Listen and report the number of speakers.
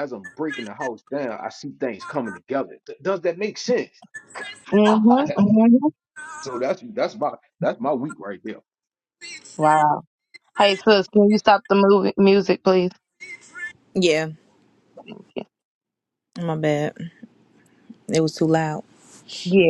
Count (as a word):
three